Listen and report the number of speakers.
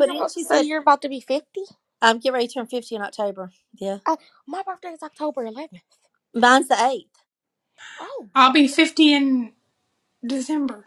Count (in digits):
3